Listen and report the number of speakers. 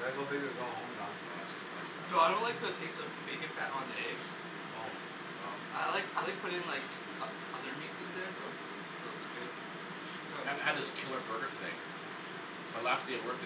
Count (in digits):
3